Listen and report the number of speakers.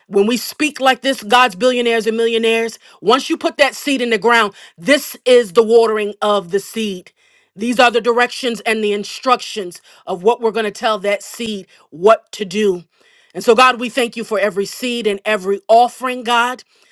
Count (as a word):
one